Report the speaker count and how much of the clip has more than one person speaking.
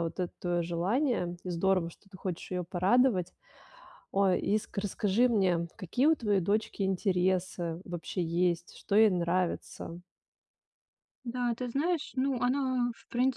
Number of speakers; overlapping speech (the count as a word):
two, no overlap